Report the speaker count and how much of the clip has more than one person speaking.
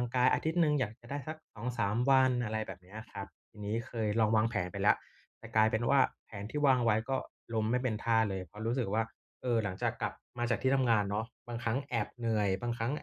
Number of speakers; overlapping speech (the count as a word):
one, no overlap